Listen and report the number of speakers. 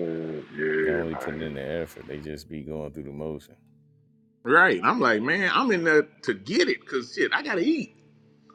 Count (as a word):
three